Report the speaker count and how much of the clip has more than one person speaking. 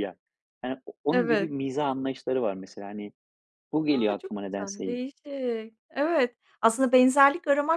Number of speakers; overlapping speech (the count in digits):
2, about 18%